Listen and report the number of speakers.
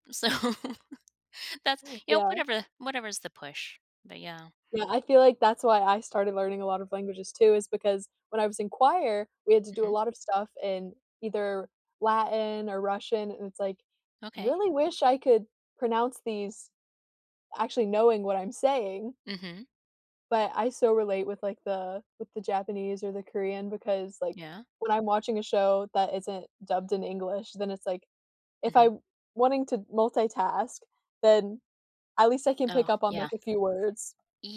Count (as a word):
two